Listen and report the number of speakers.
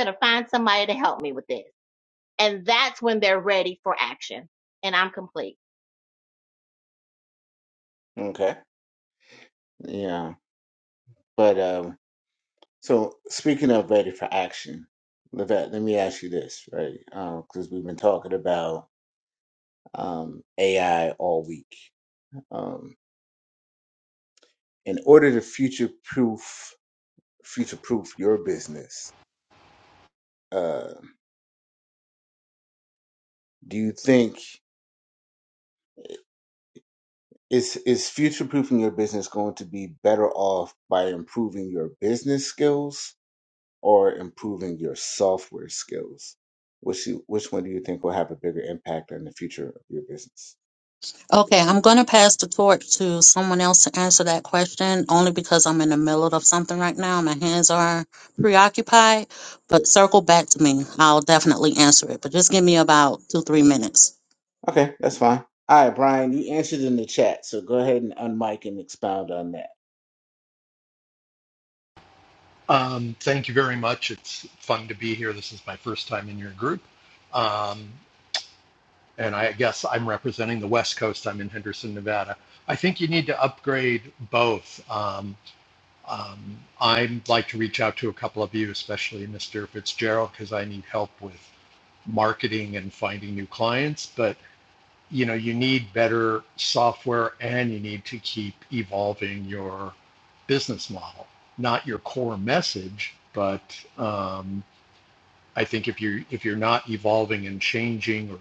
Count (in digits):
4